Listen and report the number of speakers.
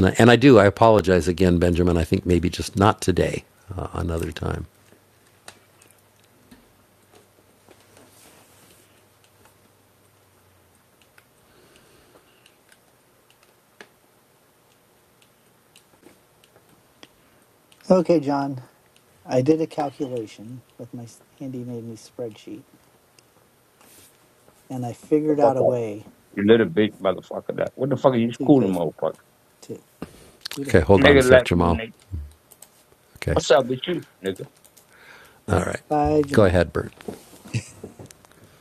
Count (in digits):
3